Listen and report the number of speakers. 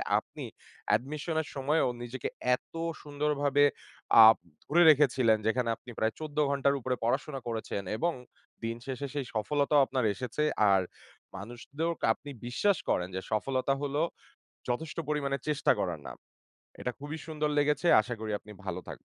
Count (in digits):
1